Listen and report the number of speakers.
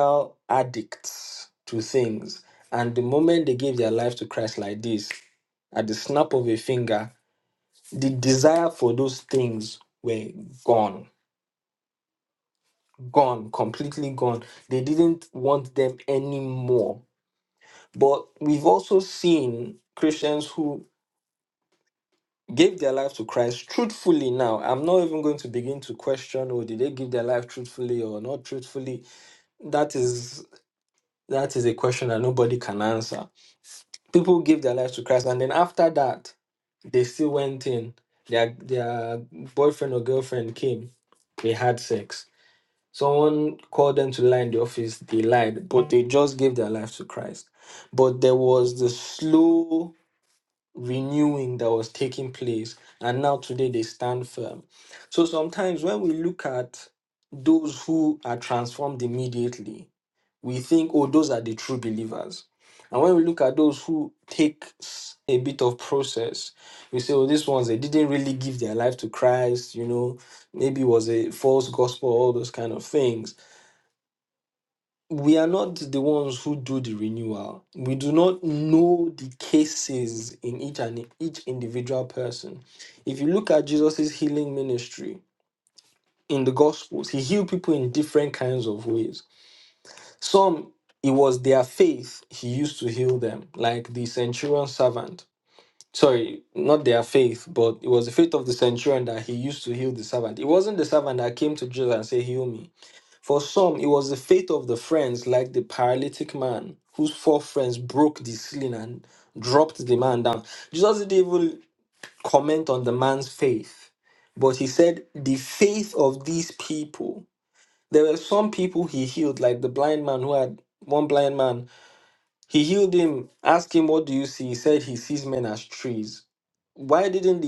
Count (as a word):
one